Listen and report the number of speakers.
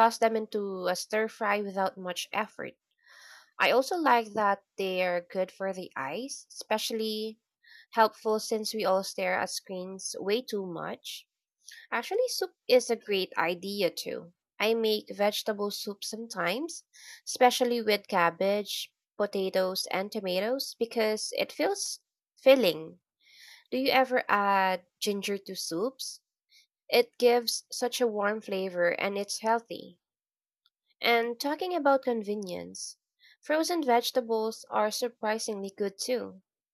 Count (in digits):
1